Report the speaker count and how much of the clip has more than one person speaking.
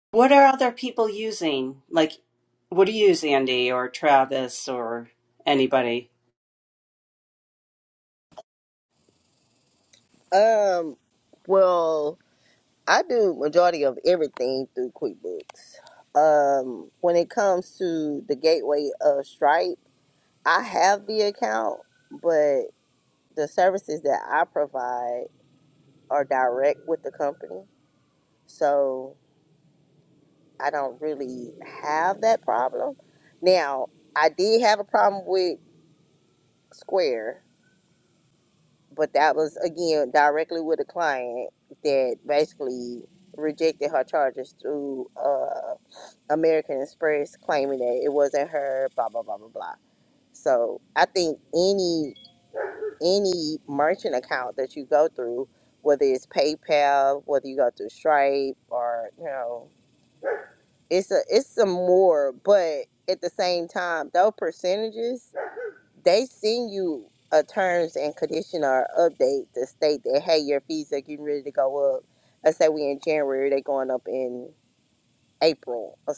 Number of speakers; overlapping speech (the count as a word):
two, no overlap